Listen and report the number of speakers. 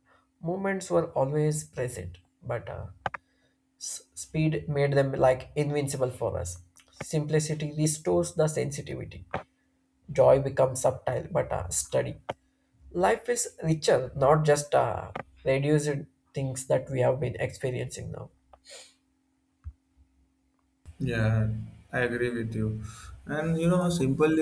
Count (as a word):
two